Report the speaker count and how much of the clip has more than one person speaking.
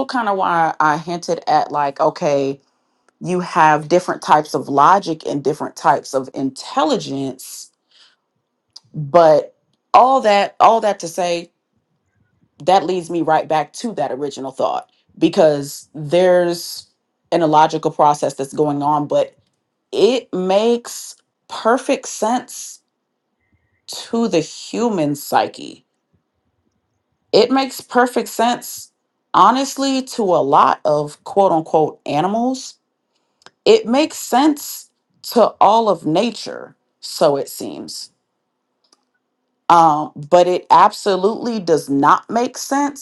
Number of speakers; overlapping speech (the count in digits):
1, no overlap